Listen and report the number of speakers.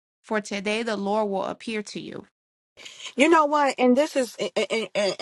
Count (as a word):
two